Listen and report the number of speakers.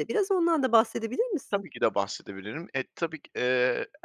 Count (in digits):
2